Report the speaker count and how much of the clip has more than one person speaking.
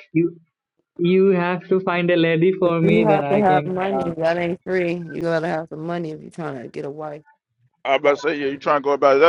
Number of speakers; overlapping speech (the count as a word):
three, about 23%